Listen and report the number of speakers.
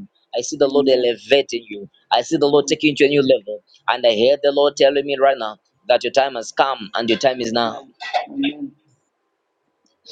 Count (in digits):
2